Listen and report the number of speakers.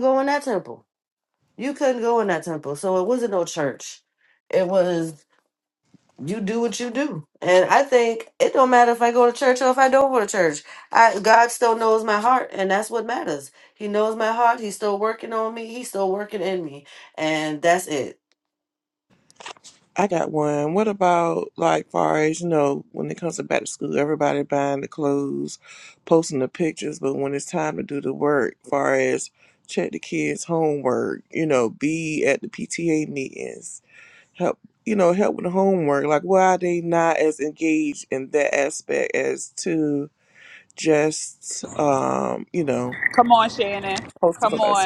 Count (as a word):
three